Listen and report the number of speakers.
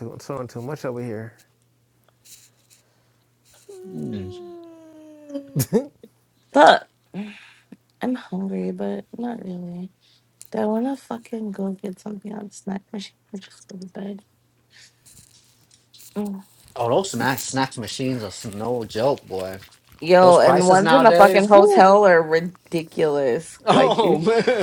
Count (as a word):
three